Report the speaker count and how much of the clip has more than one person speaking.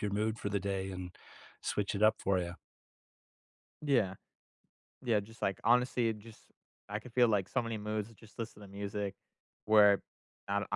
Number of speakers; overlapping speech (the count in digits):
2, no overlap